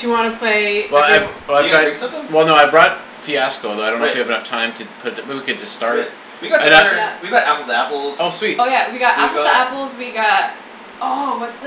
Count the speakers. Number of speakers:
four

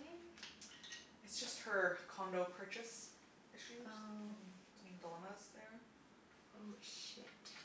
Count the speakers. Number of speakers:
two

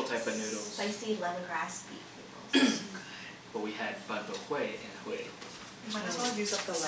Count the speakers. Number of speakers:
three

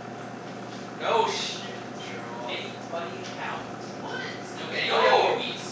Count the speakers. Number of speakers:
two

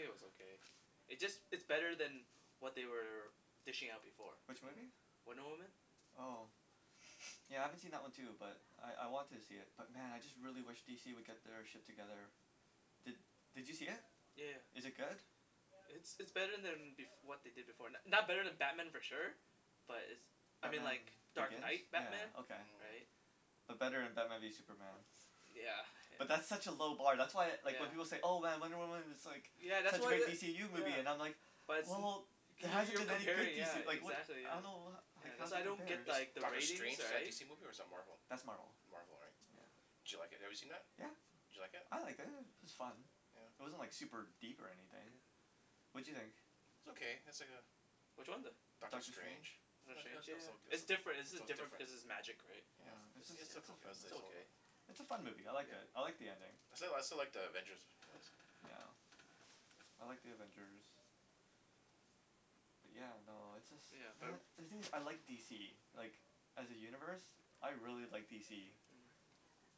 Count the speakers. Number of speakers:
three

